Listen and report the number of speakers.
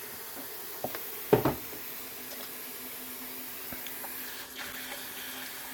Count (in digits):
0